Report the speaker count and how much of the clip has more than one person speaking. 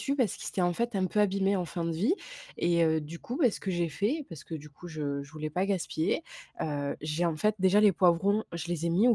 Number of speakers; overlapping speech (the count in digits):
1, no overlap